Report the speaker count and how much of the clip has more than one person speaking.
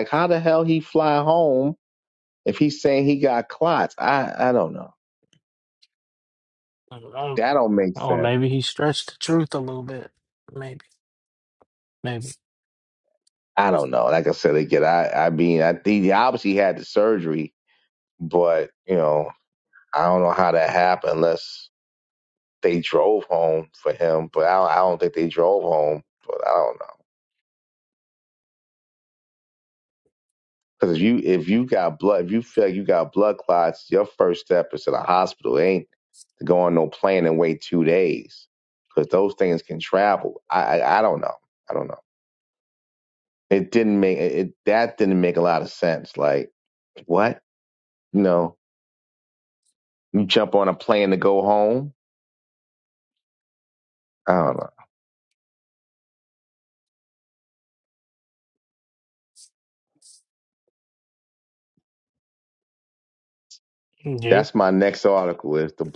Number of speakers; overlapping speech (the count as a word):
two, about 1%